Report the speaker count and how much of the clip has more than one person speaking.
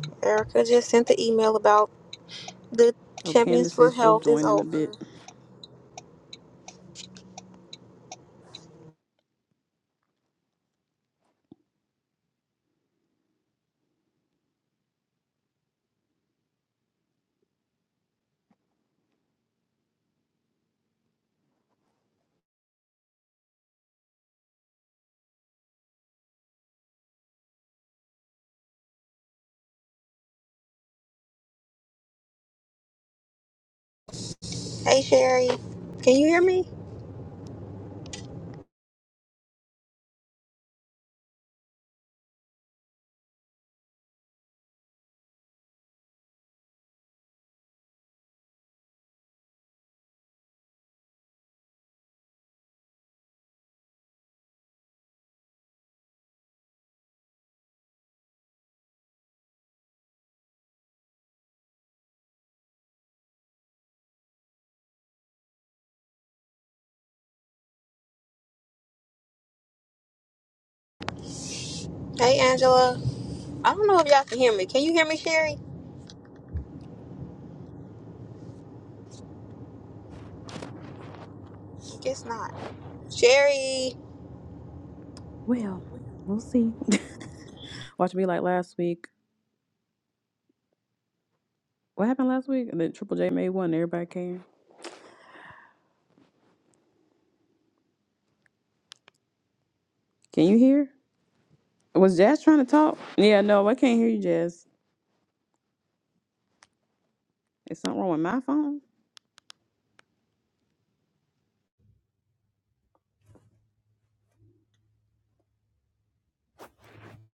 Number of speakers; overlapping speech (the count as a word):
two, about 1%